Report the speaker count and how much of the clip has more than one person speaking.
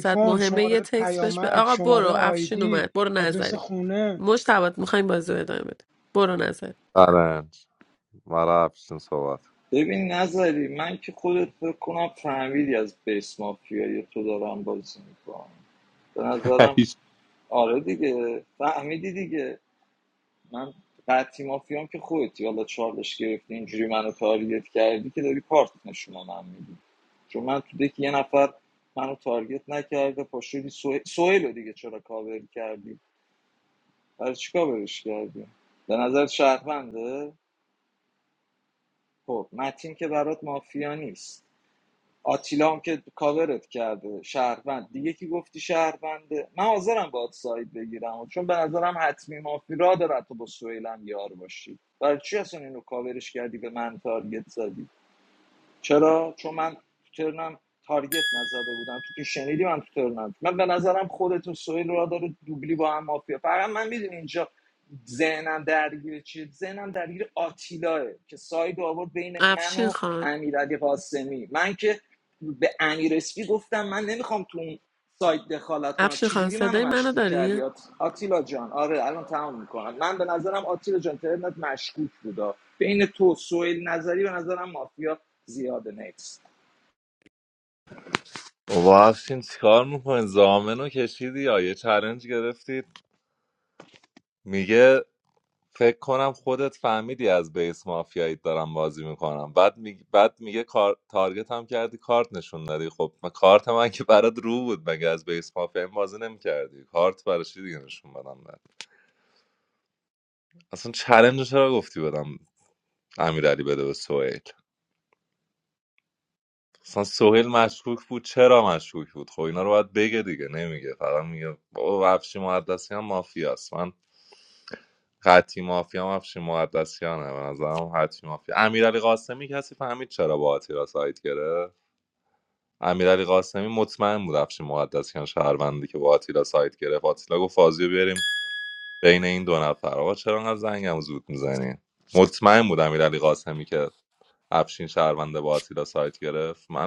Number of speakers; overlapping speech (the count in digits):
4, about 4%